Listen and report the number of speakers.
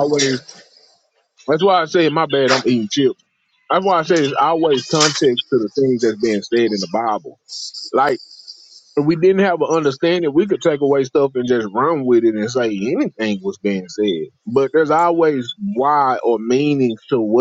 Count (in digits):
1